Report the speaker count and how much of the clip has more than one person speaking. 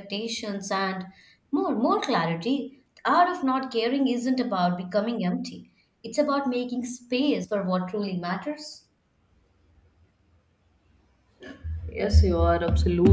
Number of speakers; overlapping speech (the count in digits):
2, no overlap